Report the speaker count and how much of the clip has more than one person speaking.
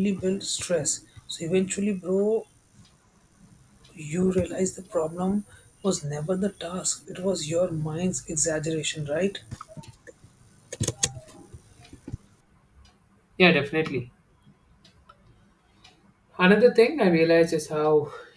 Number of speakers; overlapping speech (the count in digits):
2, no overlap